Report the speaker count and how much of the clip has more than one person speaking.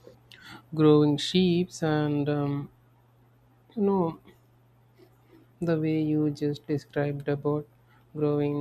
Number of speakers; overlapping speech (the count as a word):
one, no overlap